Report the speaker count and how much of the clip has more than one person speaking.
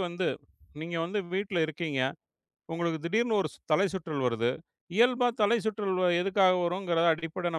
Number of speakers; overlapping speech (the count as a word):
one, no overlap